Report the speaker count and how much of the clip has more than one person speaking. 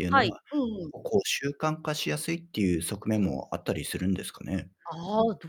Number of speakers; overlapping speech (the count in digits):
2, about 8%